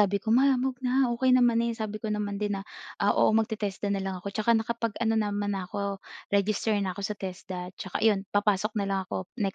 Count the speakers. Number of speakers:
1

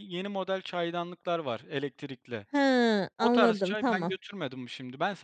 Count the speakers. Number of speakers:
2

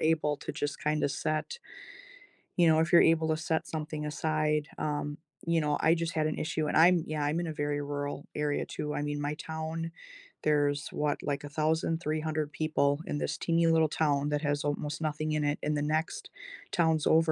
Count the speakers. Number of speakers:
1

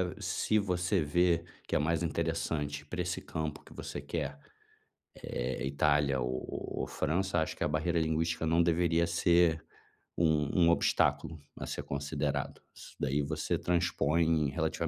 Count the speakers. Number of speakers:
1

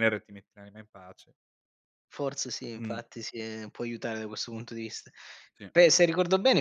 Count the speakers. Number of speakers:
2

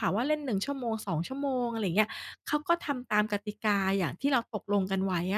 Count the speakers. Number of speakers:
1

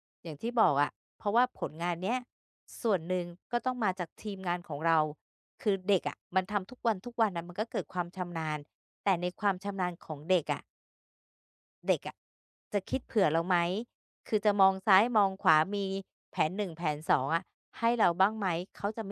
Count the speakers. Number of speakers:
1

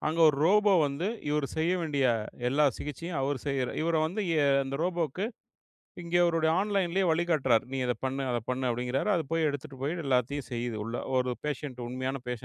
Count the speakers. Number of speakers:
1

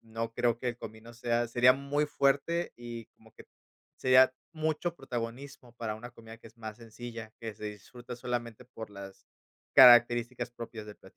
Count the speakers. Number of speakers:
1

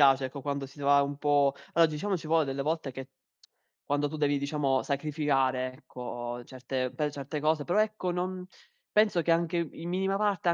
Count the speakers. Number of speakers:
1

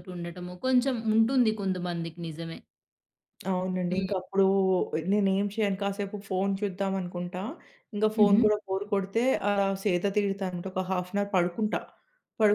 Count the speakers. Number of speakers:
2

